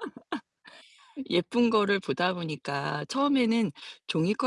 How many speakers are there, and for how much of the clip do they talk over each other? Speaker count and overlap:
one, no overlap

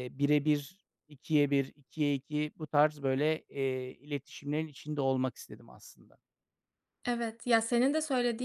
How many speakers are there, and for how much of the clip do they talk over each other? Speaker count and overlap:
two, no overlap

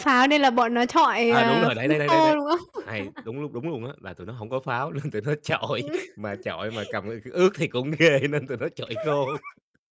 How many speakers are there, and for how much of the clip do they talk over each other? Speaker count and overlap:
two, about 13%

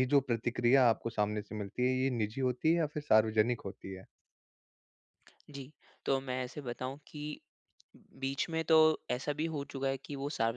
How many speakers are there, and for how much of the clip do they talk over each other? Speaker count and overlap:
two, no overlap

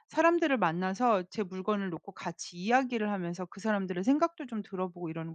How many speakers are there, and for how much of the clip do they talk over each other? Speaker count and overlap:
one, no overlap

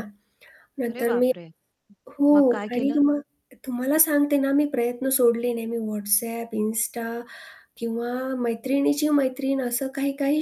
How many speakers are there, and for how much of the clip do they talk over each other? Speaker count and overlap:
two, about 11%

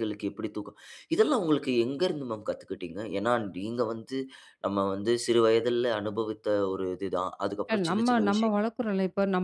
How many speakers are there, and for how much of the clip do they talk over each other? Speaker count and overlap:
two, about 10%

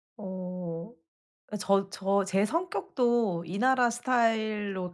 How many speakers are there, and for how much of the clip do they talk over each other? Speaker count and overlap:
one, no overlap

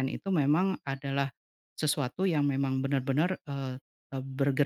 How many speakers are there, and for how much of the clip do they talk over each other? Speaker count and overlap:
one, no overlap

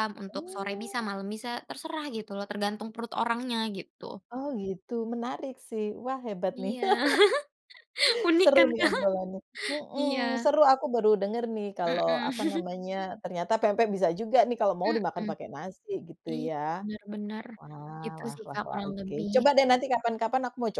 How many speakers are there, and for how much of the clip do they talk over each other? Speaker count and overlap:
two, about 21%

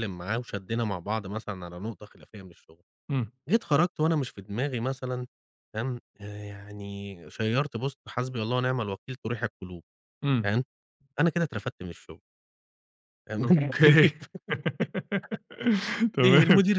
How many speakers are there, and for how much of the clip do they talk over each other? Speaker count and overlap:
two, about 3%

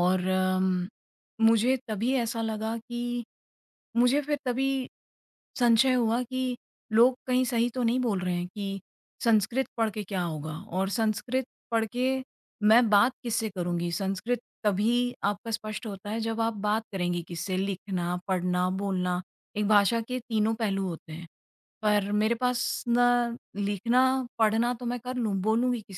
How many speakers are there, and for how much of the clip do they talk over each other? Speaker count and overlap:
one, no overlap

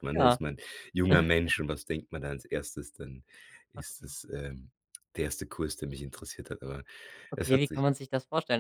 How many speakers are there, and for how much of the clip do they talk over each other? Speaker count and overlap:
two, about 9%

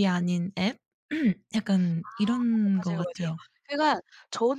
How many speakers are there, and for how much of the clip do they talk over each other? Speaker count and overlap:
two, about 16%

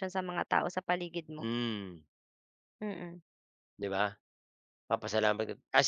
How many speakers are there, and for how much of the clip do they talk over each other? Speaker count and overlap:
two, about 1%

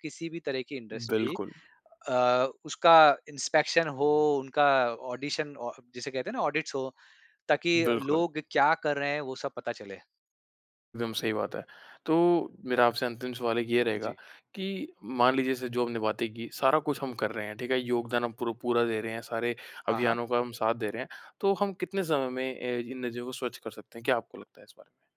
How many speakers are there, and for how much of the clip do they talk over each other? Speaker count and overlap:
two, about 5%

